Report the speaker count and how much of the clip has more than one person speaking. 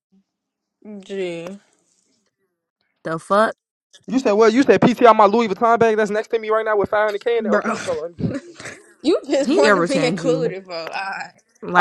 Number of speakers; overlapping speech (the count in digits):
3, about 12%